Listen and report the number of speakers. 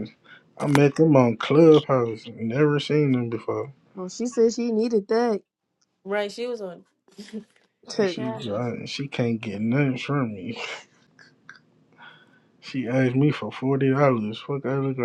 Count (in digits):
3